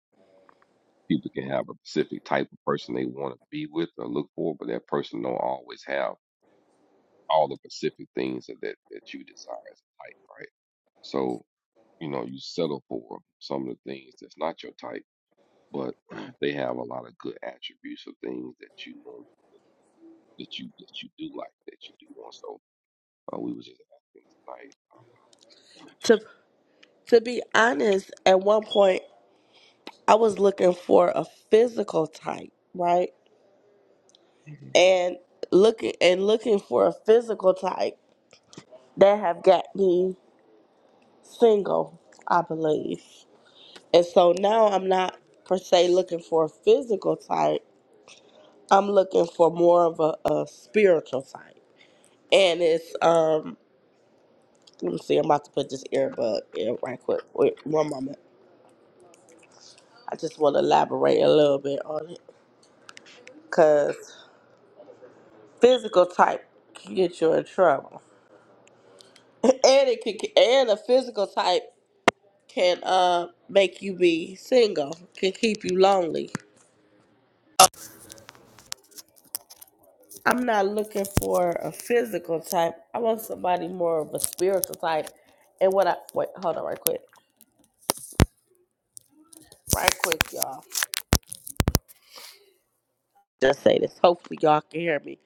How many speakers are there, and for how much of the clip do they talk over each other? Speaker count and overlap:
two, no overlap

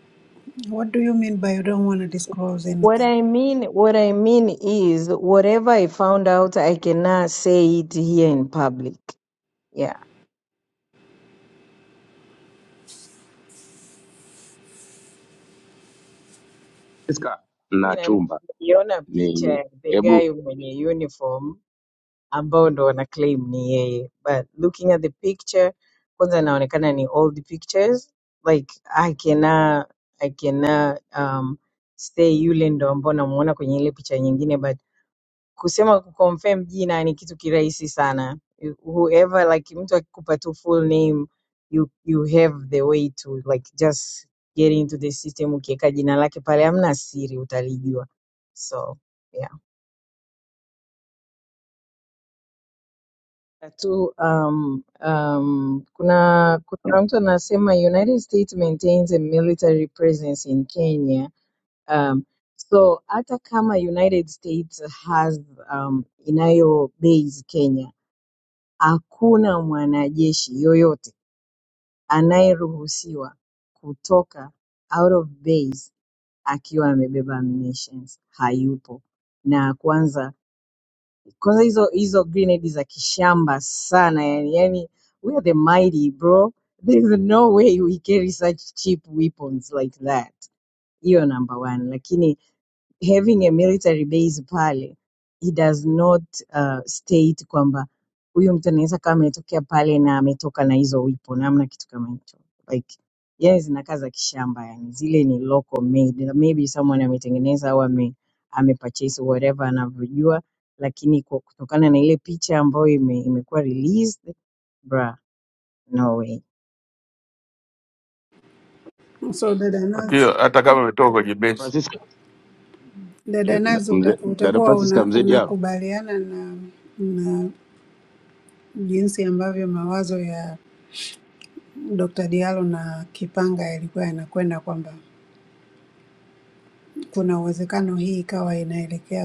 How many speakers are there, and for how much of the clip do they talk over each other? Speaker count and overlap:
four, about 2%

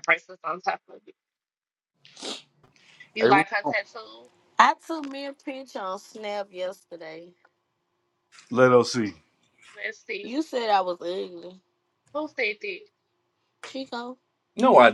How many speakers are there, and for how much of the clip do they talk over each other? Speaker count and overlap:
three, about 4%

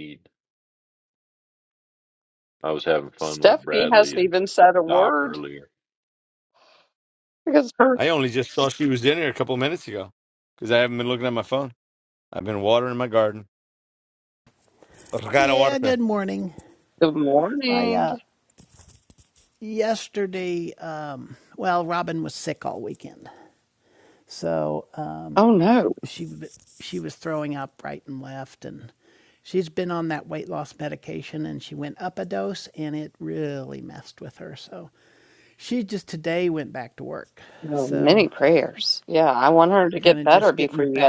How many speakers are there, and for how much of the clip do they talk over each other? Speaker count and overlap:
four, about 10%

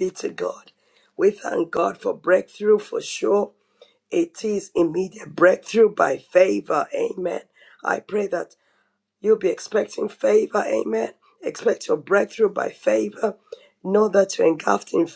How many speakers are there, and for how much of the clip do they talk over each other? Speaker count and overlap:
one, no overlap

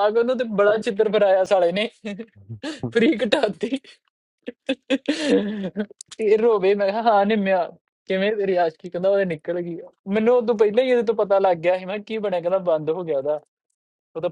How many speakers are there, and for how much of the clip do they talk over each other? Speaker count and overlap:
one, no overlap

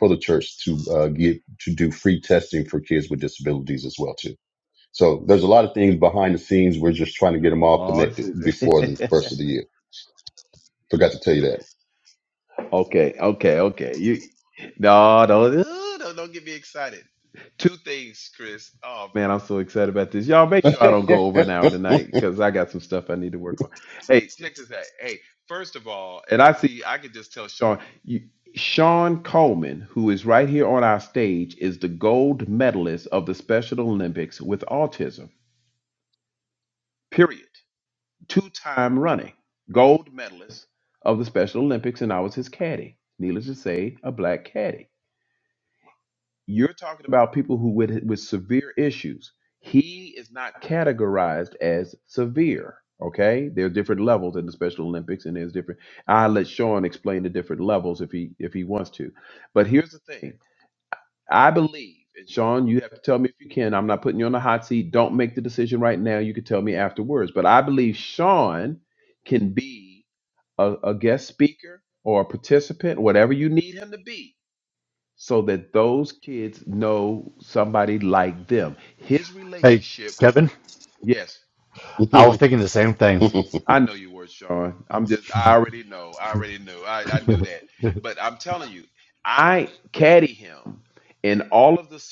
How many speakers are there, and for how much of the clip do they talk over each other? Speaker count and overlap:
three, about 3%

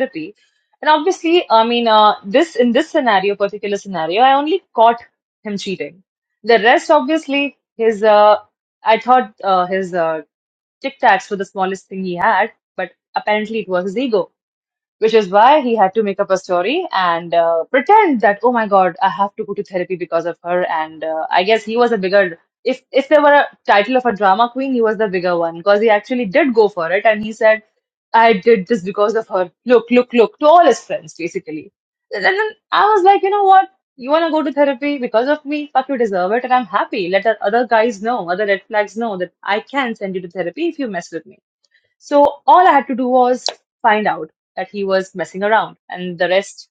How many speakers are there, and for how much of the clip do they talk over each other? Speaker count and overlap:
one, no overlap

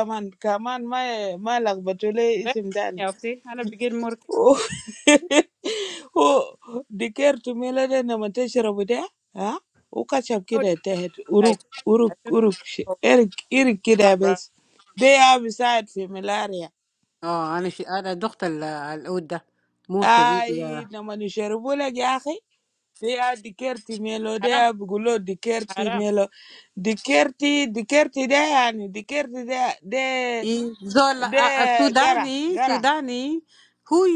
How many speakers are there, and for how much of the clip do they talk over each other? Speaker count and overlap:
three, about 10%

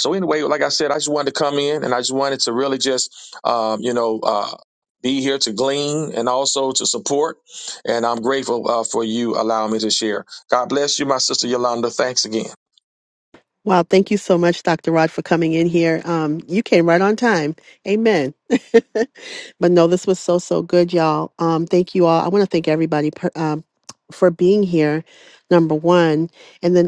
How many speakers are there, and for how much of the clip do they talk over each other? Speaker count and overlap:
two, no overlap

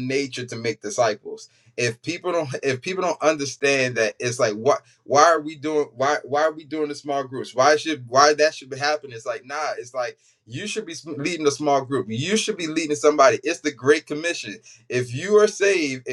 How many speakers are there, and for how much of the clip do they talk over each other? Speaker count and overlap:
one, no overlap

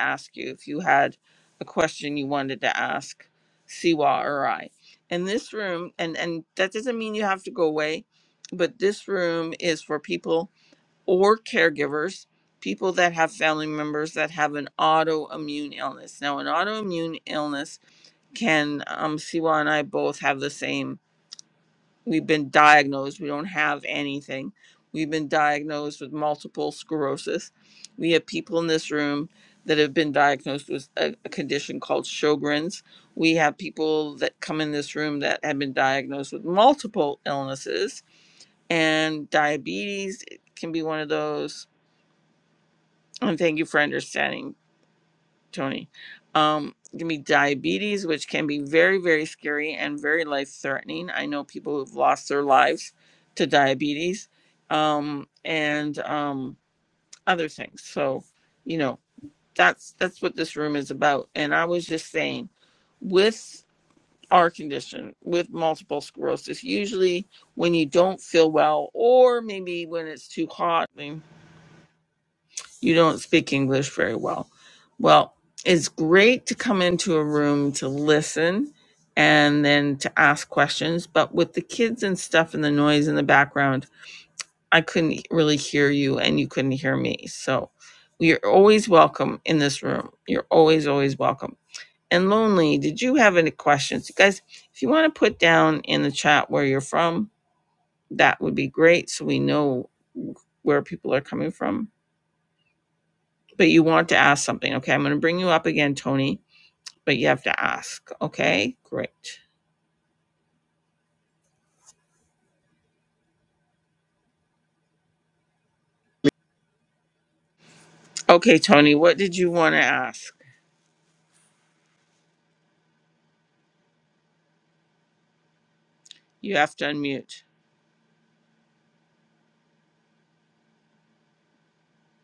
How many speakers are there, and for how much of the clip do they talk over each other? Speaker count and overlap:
one, no overlap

